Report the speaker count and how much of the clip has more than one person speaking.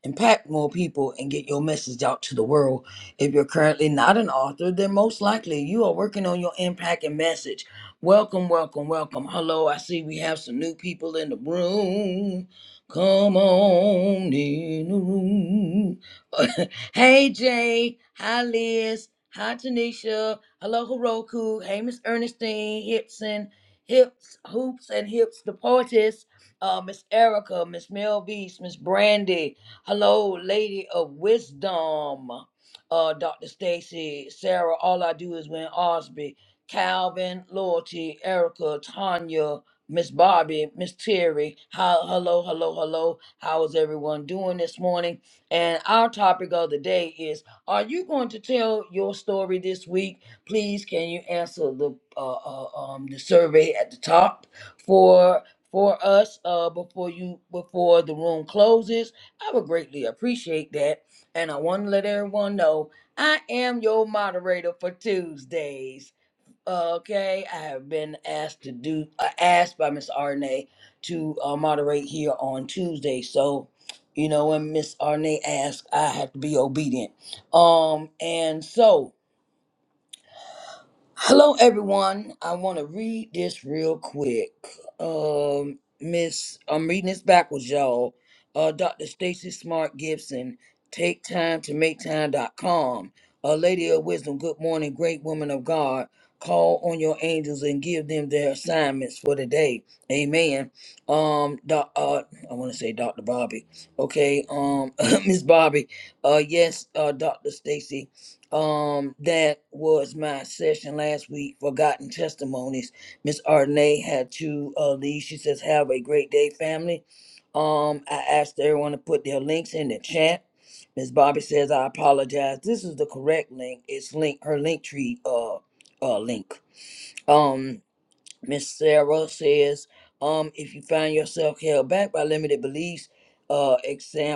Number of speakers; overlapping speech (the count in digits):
1, no overlap